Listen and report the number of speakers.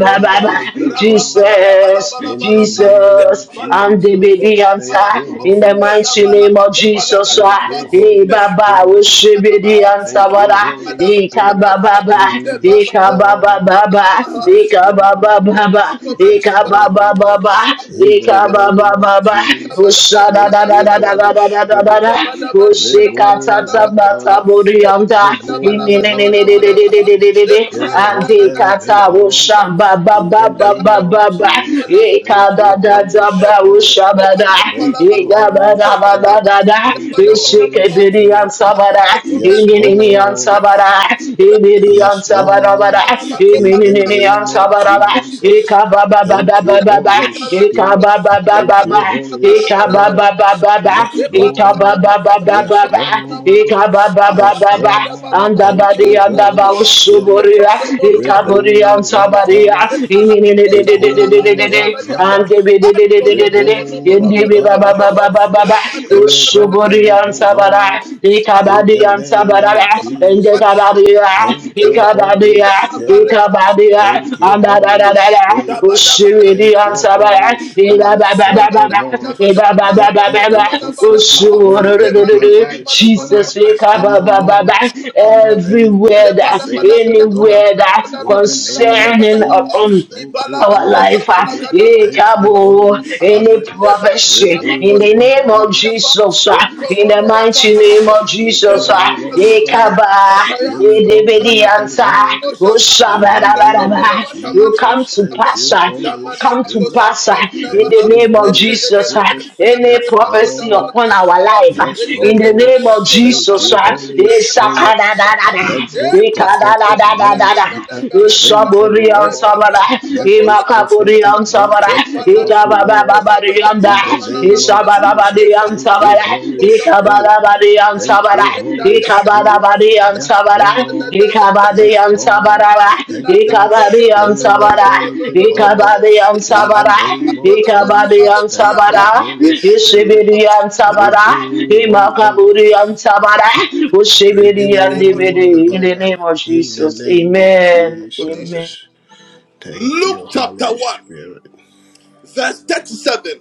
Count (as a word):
three